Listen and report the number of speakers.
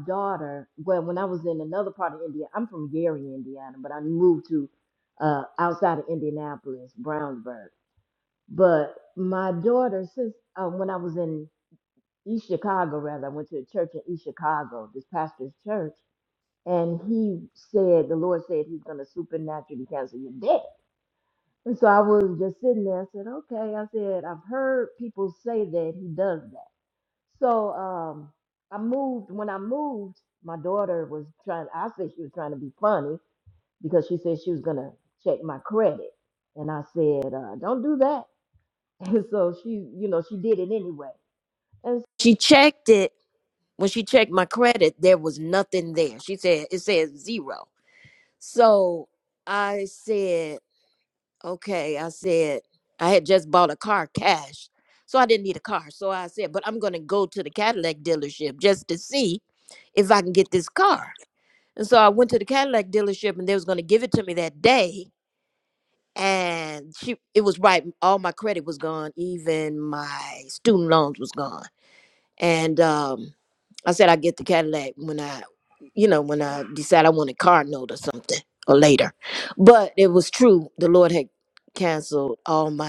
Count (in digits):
1